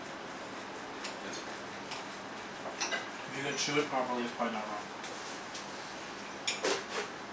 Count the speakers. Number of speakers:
one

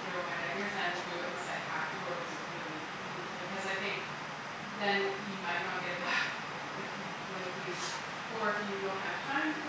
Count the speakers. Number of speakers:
one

